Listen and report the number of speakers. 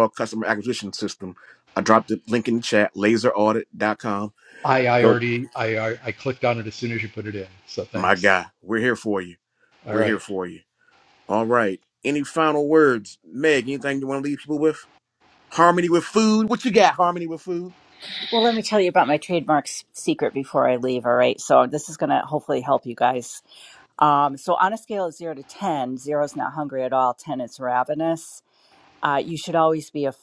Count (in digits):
3